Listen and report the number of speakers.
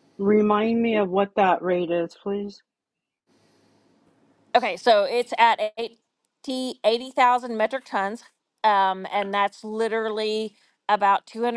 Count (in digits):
2